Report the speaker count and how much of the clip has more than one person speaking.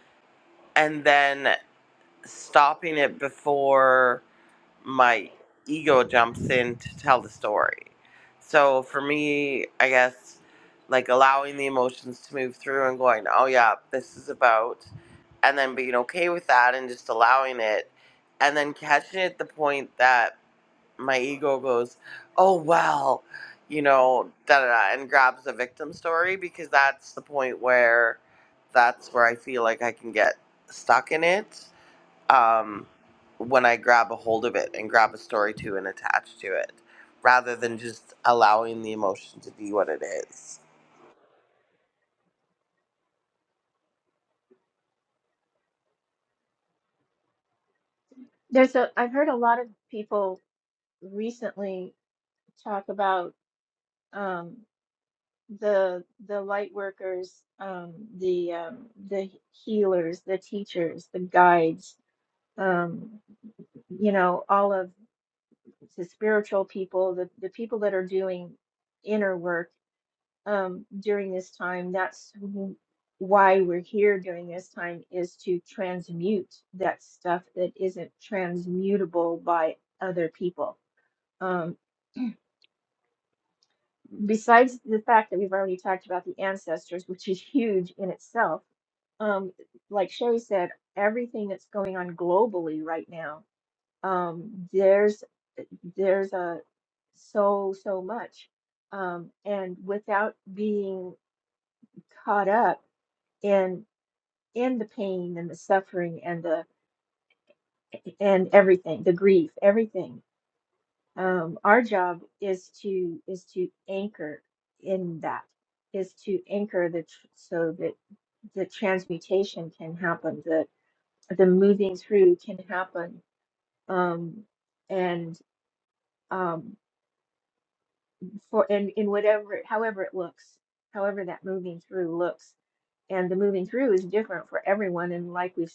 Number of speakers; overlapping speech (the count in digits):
2, no overlap